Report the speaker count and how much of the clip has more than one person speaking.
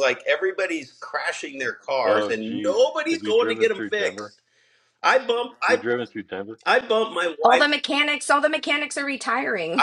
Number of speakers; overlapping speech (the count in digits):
3, about 23%